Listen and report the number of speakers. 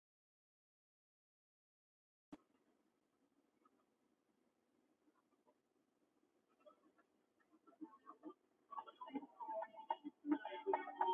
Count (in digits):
0